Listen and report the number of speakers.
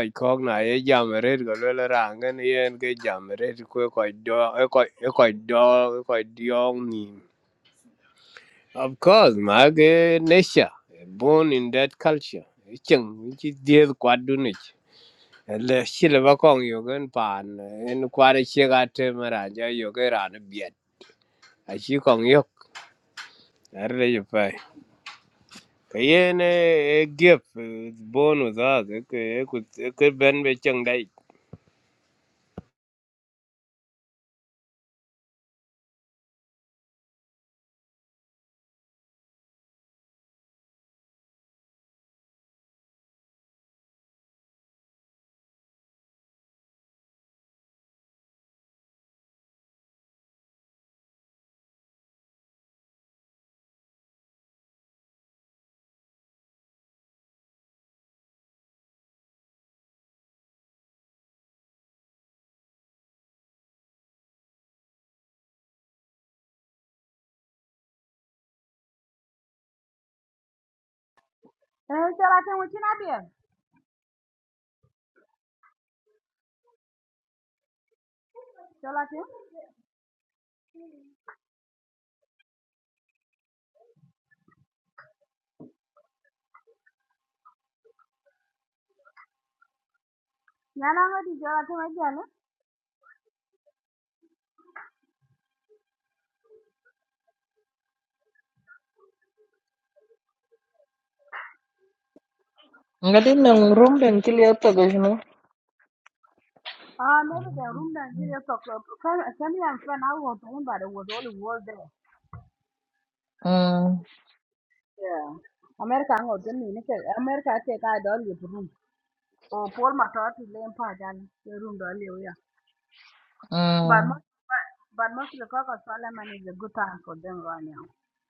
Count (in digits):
3